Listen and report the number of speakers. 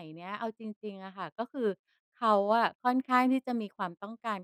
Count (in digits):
1